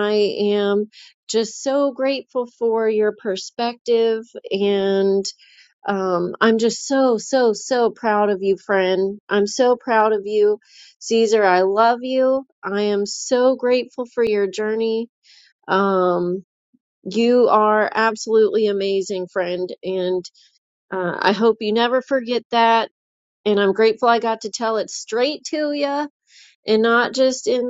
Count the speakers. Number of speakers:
1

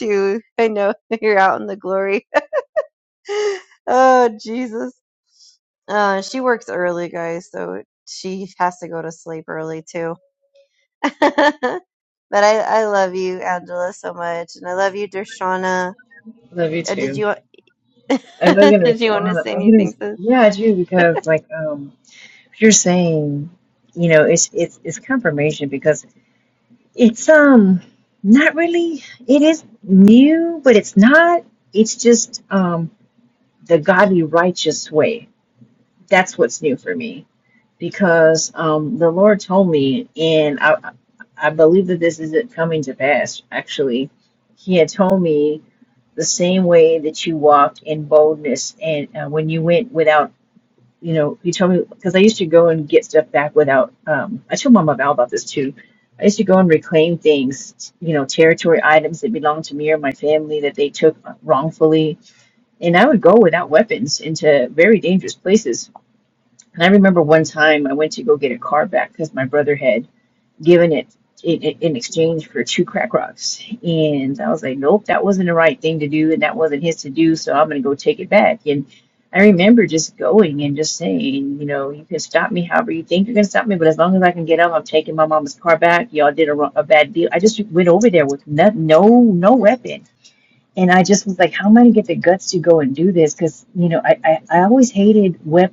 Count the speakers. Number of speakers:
2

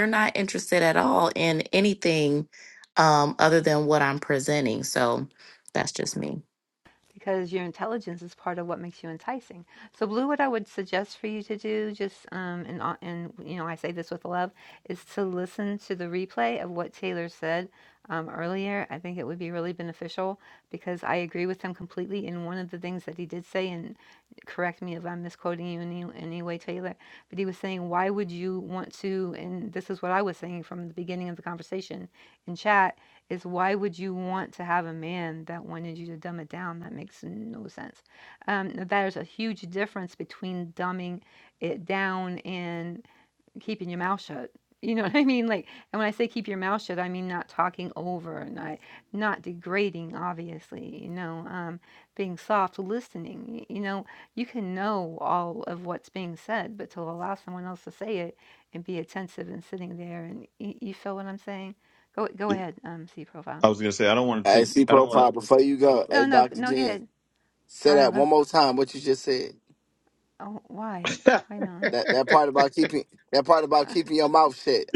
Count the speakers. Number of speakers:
4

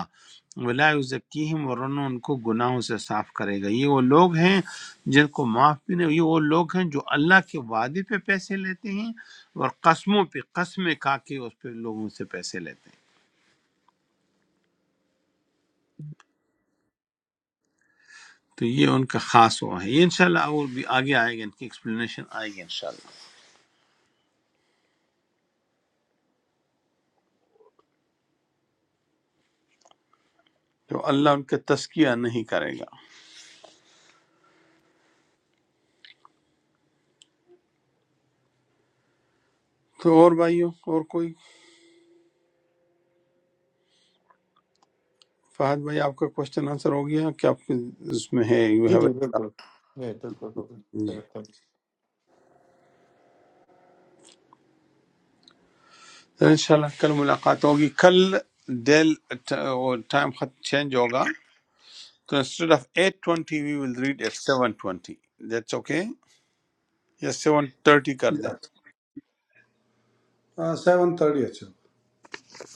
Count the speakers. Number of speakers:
3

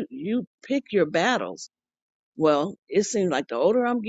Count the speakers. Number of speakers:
1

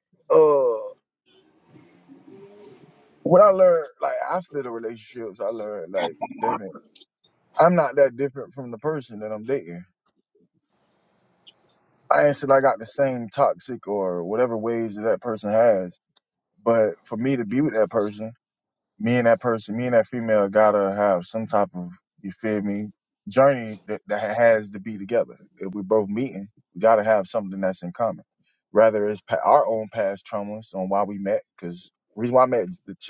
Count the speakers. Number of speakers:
1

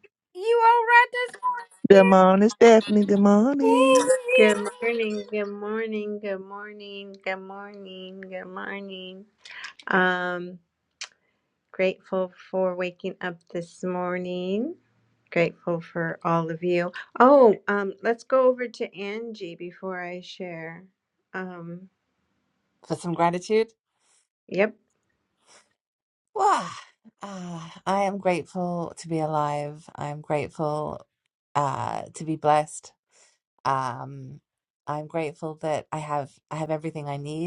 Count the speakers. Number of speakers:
4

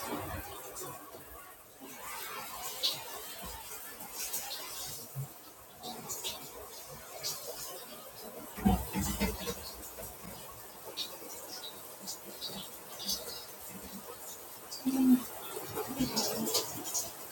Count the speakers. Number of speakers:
0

